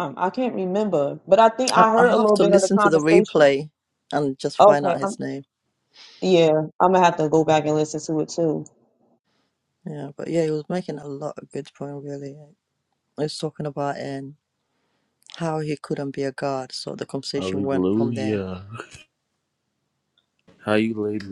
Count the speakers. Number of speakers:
3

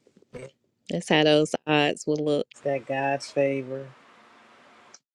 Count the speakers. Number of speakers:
2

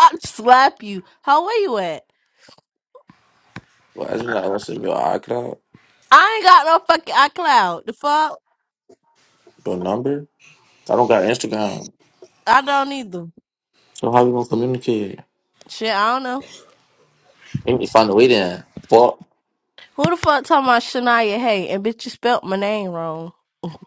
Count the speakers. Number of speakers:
2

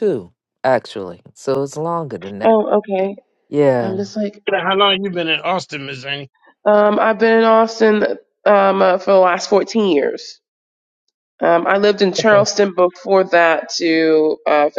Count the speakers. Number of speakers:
3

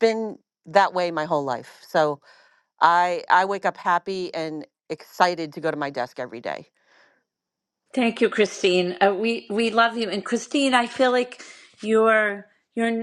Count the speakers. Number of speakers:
2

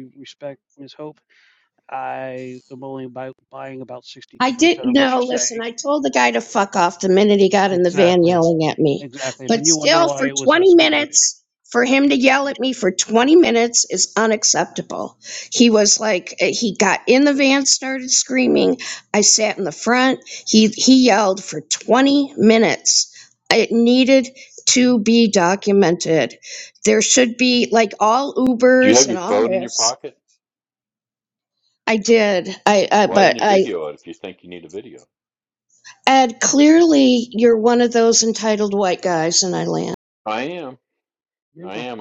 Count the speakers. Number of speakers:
3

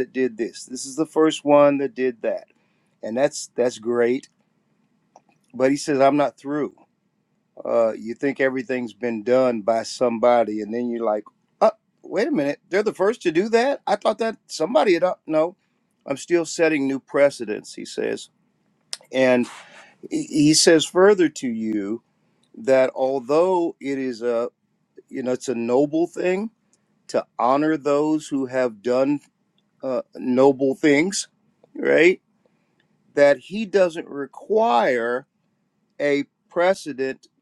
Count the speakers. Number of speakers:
1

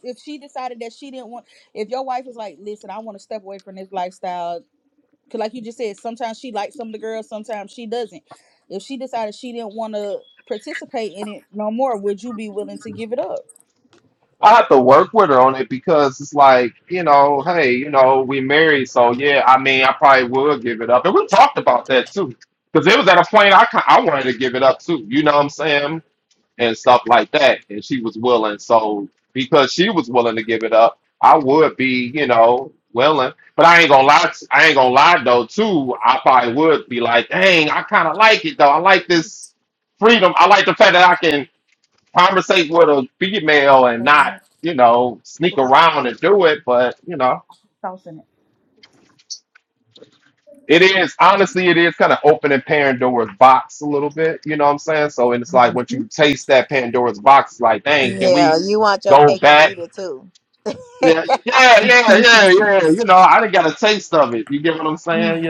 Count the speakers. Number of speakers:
3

